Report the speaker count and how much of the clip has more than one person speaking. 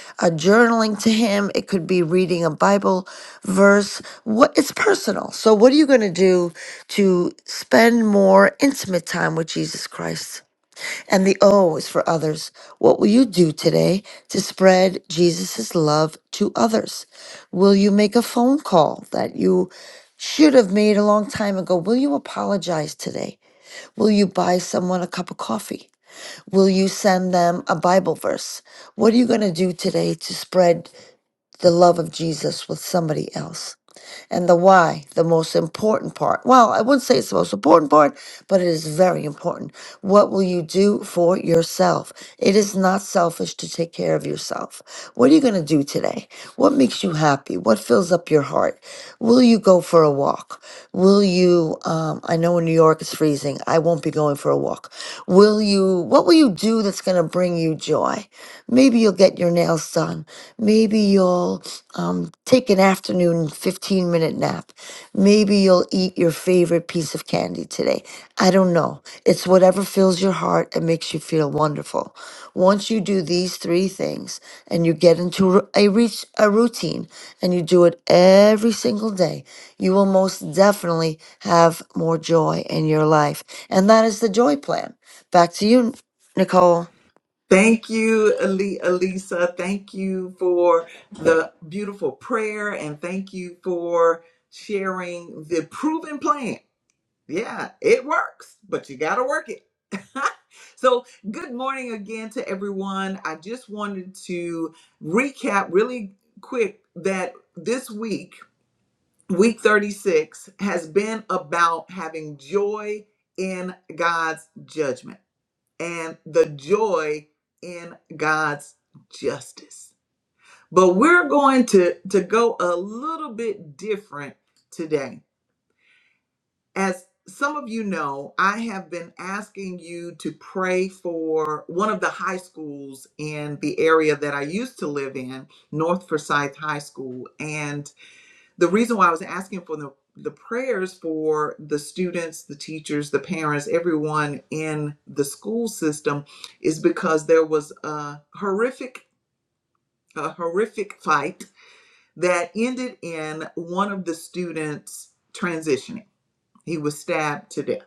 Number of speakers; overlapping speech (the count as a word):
two, no overlap